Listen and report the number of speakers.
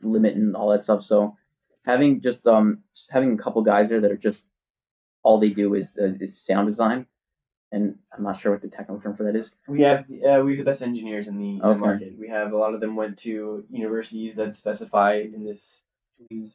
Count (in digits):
2